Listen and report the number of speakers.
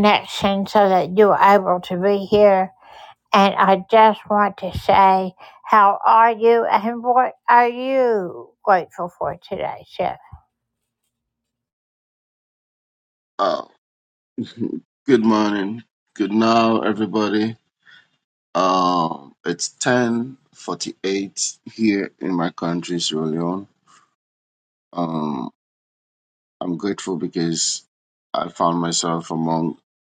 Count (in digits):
2